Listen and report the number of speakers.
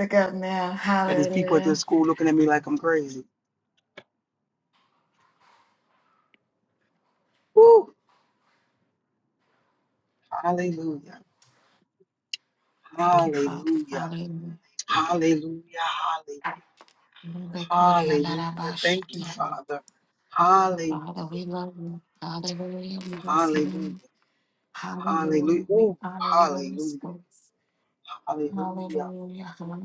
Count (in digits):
2